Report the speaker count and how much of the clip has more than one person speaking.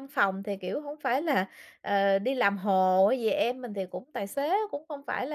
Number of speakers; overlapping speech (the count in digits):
1, no overlap